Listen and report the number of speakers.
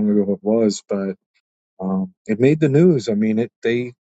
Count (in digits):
1